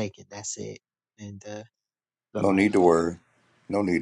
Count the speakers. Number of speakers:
two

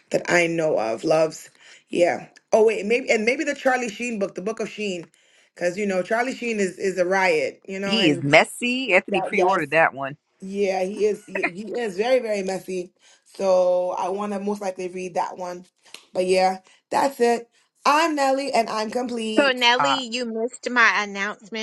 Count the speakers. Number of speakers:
three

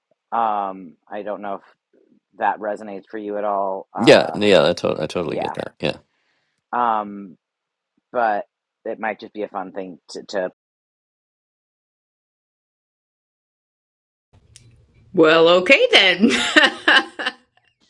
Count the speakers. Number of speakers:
three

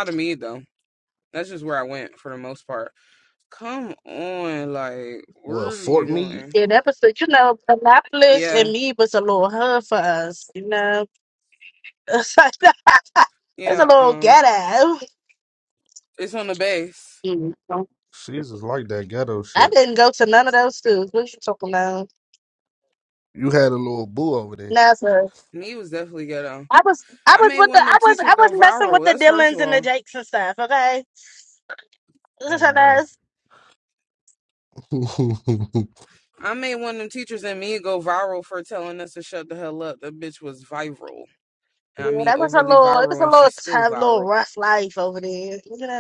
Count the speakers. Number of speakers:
three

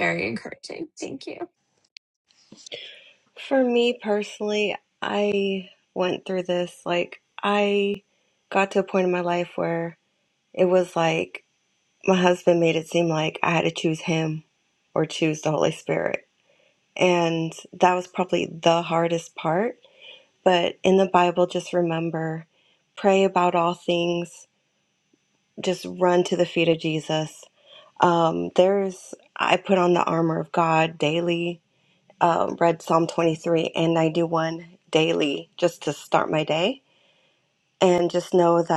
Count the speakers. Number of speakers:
two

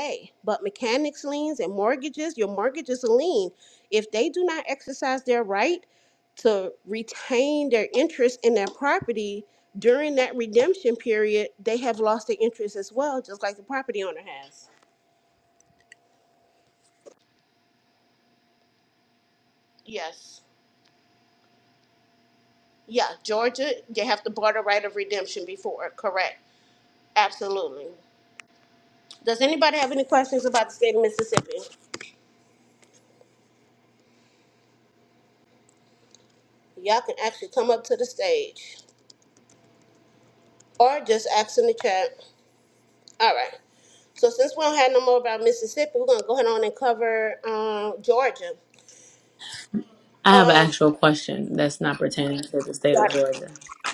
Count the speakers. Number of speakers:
two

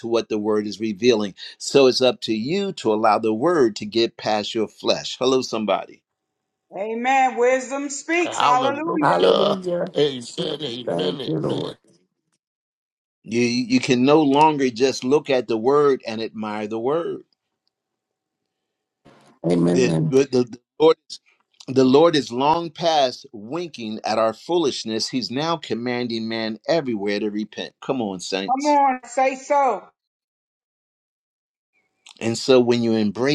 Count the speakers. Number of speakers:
four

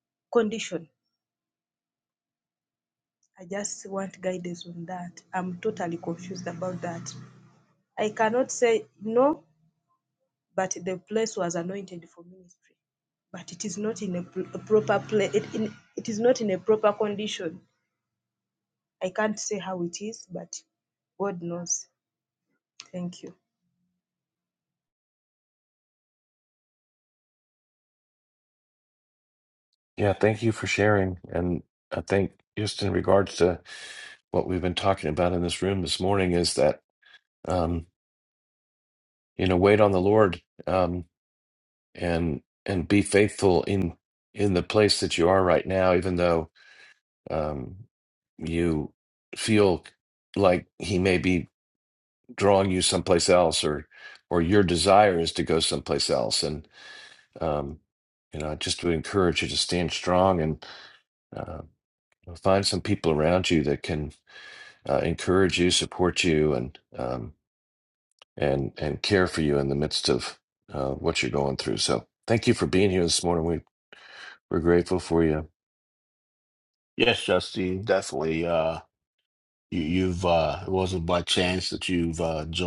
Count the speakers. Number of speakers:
three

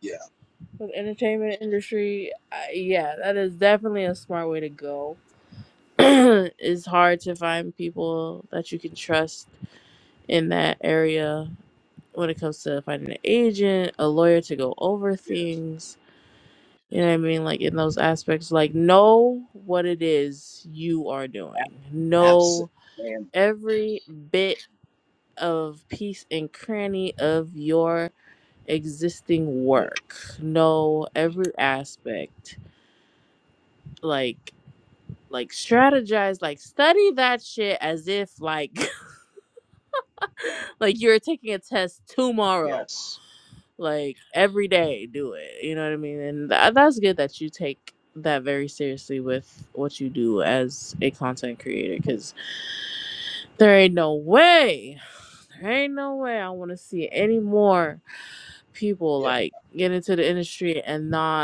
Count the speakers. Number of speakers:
two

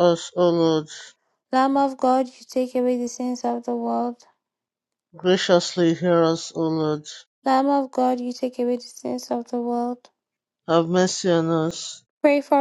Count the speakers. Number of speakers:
two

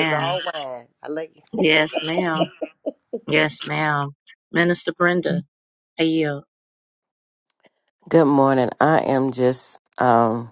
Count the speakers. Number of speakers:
three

